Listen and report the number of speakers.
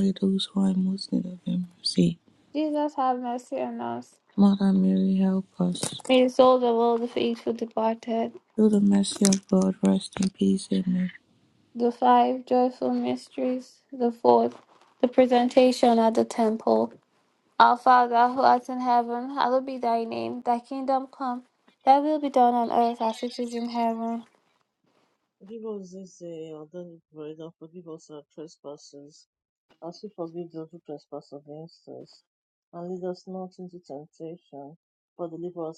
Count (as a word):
three